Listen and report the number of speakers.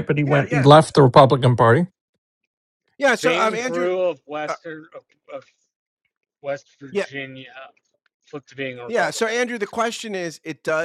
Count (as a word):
three